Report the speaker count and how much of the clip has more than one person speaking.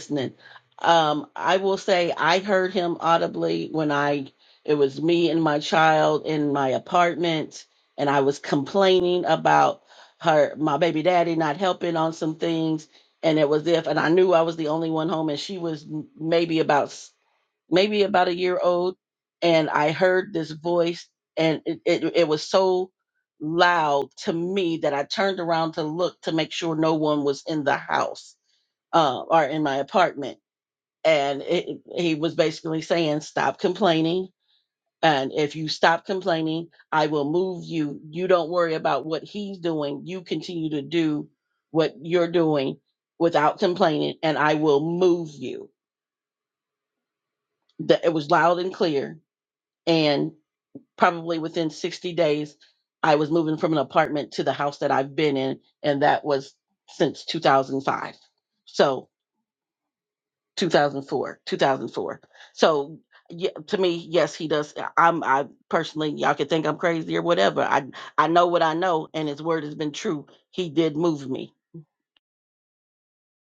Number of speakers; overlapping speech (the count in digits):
1, no overlap